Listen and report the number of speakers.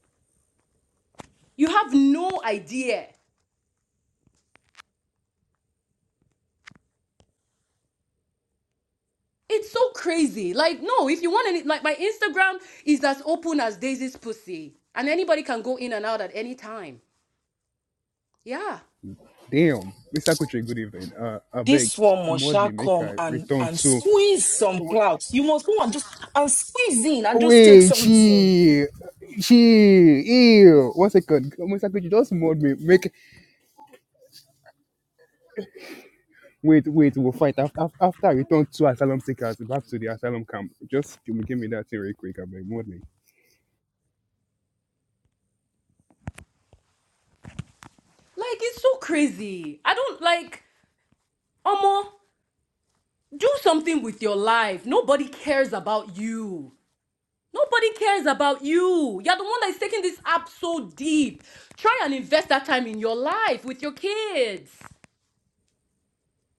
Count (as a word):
three